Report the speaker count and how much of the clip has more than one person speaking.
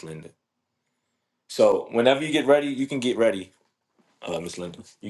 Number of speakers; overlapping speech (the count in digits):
1, no overlap